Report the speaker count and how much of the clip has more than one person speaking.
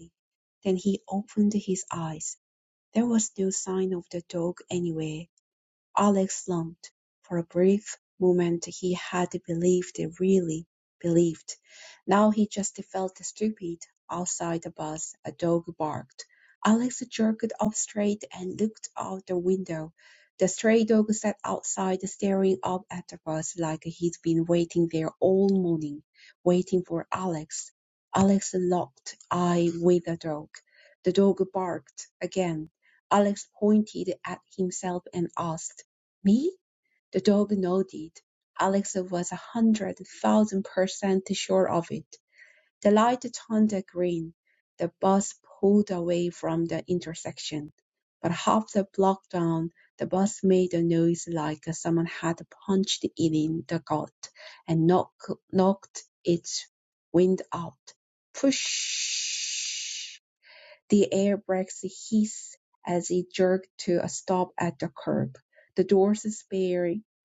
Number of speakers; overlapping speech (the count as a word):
one, no overlap